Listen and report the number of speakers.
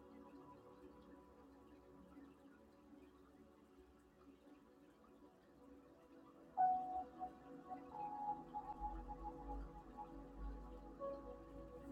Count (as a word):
zero